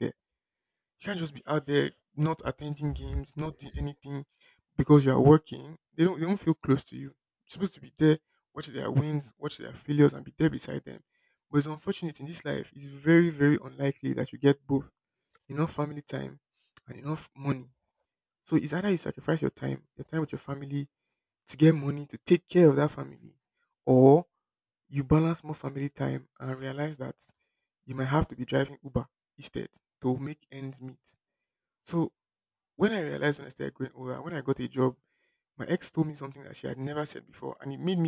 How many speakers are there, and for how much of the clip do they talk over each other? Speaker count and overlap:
one, no overlap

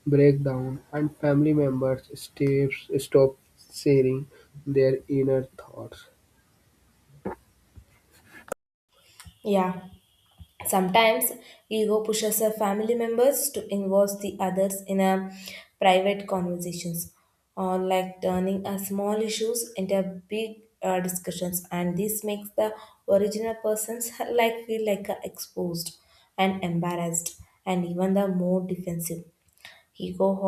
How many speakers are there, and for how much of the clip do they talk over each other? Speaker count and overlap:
two, no overlap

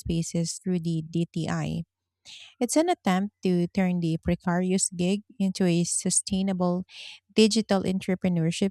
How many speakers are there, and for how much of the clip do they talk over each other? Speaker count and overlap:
one, no overlap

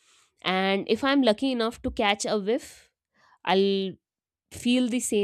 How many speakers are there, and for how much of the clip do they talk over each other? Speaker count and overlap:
one, no overlap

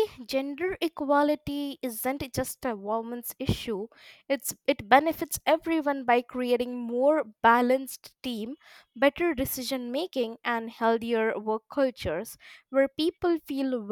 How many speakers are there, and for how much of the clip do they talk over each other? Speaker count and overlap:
one, no overlap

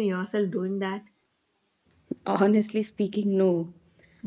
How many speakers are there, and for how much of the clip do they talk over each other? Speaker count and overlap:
two, under 1%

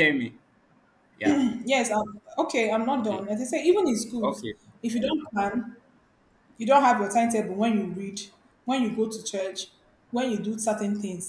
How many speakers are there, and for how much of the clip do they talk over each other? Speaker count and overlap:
two, about 4%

